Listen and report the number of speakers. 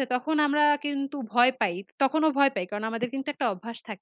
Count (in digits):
1